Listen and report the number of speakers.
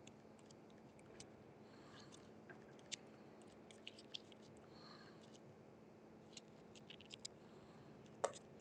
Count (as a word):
zero